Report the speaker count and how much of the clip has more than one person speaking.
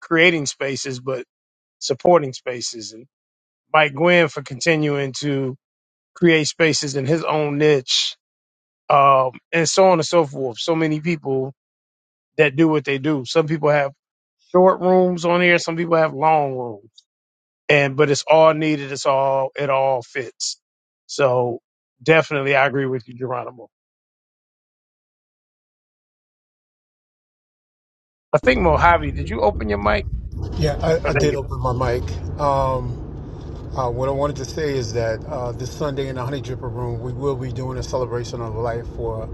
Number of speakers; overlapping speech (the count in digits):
2, about 1%